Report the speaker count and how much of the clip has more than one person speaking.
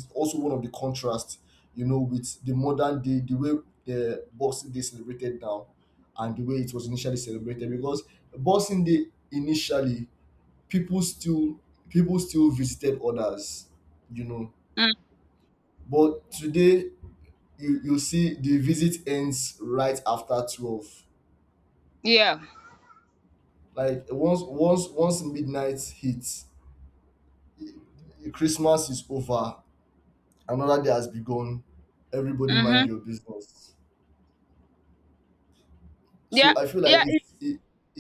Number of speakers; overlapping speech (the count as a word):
two, about 3%